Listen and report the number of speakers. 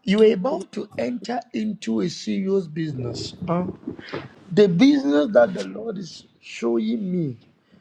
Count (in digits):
1